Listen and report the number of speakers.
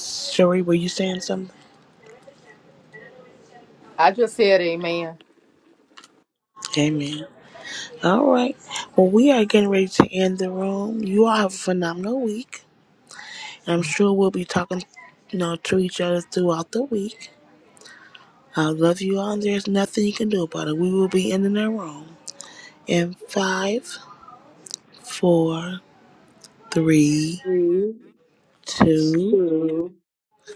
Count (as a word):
three